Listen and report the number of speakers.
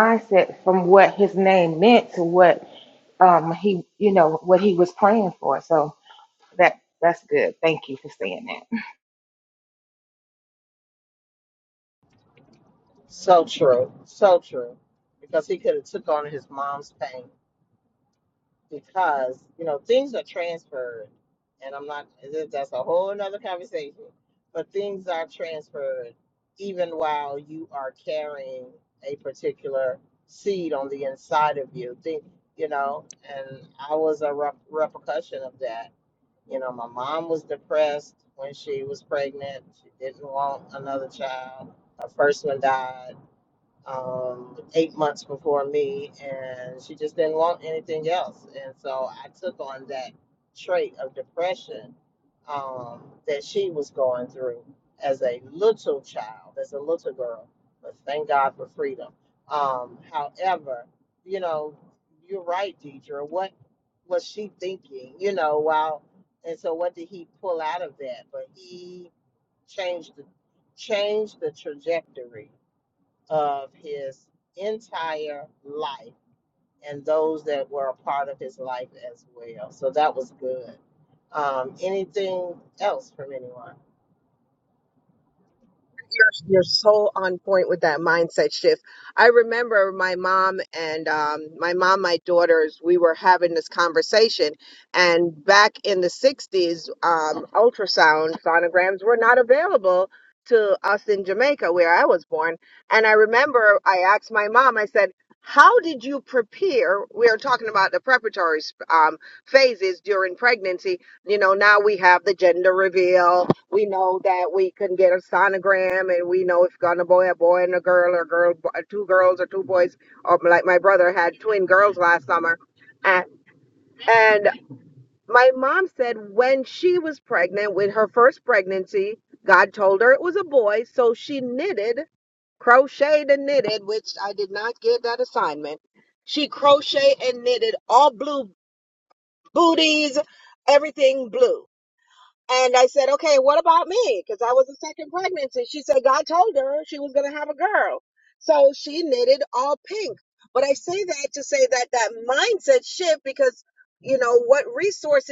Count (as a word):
three